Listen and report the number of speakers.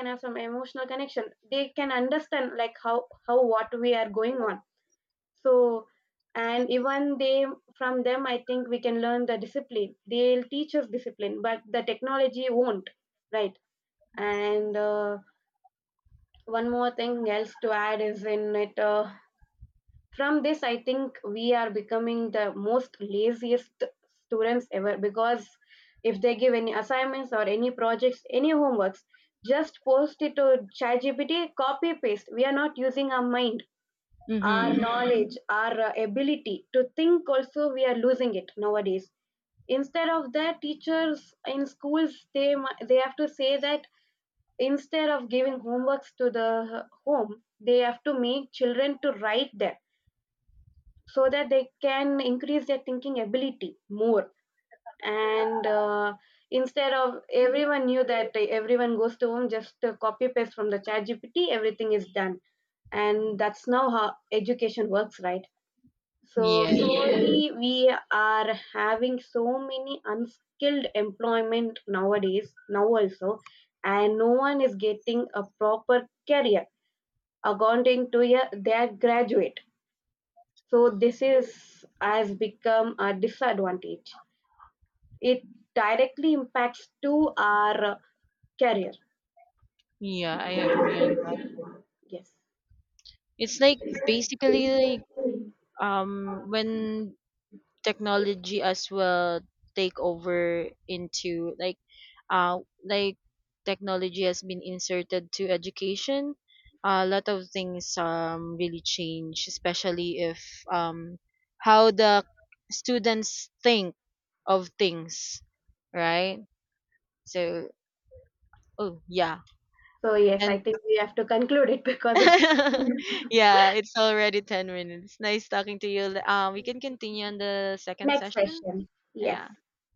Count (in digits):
2